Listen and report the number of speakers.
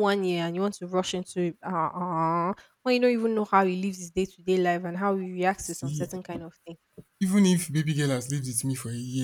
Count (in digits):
2